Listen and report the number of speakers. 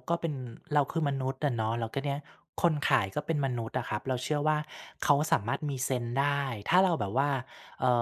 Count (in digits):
1